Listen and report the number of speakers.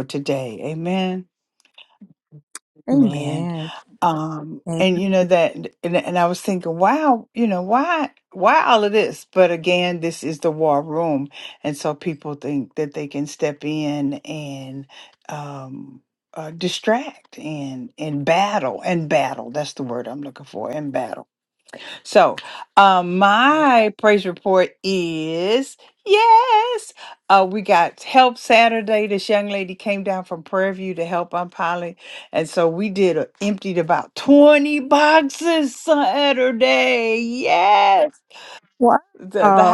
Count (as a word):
two